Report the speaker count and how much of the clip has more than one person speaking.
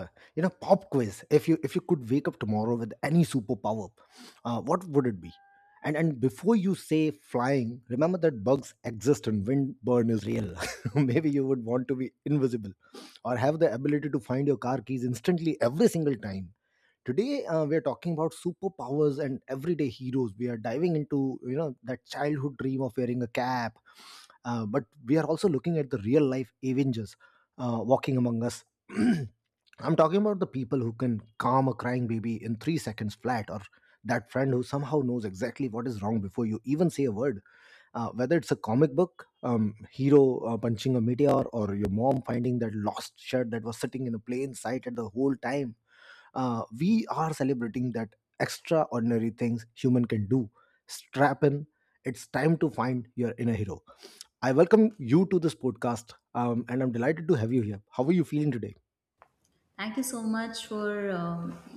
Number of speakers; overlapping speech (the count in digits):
2, no overlap